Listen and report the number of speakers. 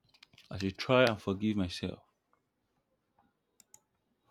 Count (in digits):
1